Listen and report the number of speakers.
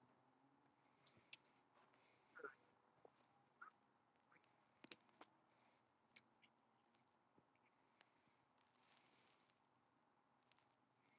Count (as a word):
zero